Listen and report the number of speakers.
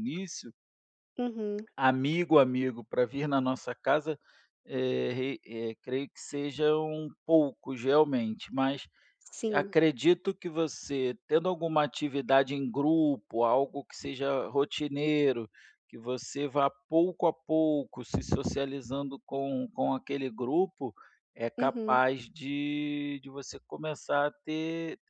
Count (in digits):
2